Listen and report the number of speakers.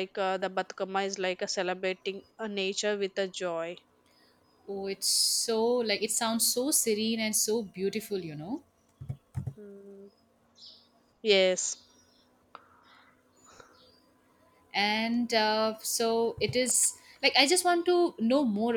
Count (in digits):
2